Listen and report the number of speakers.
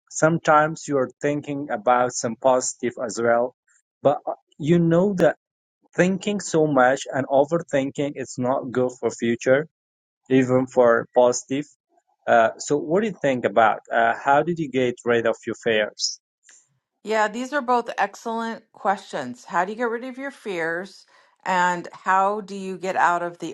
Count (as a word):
two